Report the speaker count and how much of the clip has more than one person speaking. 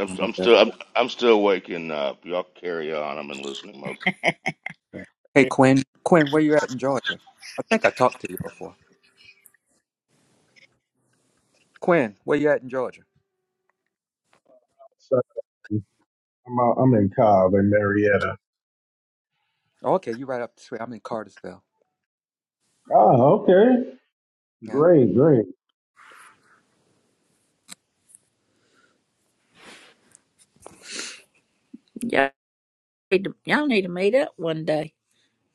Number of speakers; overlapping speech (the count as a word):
four, about 1%